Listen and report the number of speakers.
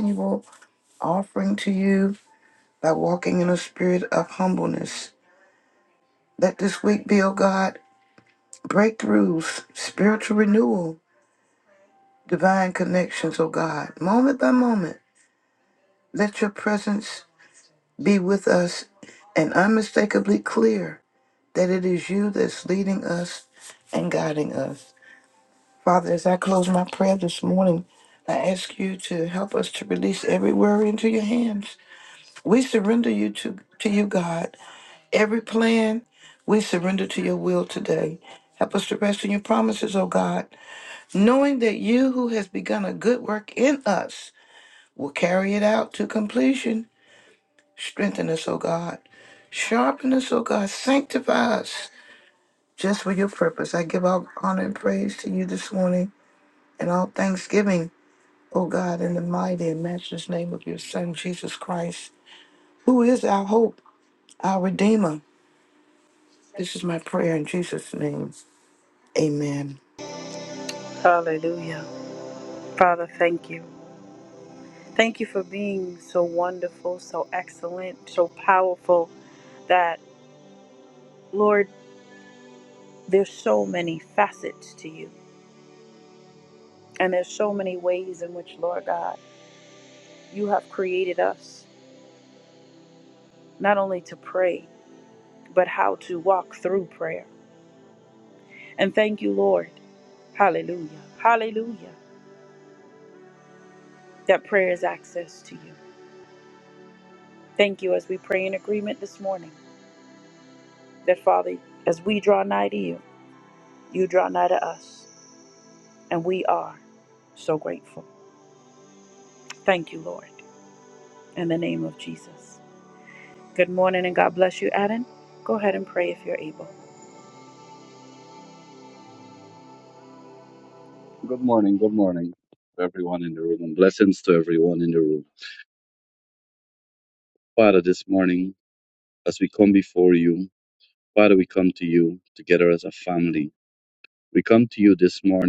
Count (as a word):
three